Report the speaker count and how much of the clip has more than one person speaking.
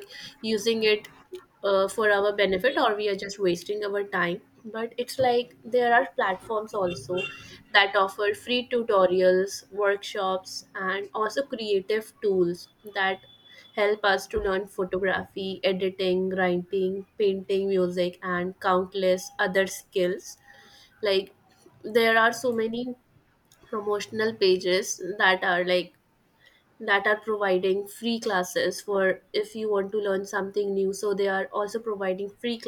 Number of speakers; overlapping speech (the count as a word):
one, no overlap